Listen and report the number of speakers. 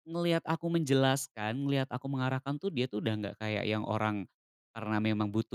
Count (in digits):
1